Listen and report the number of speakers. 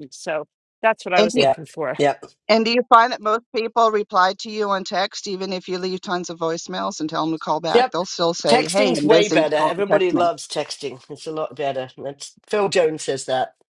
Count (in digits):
3